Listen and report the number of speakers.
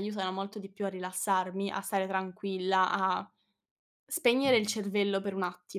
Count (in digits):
1